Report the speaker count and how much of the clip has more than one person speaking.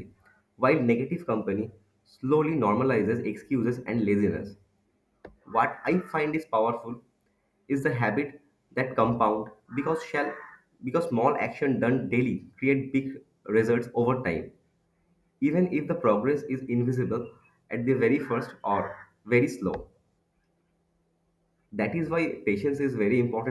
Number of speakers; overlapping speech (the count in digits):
1, no overlap